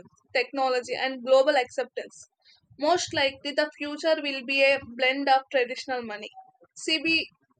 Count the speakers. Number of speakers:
1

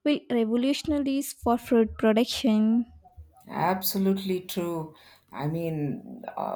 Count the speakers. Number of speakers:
2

